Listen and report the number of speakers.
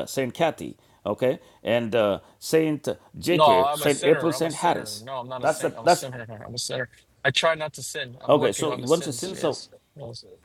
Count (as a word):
two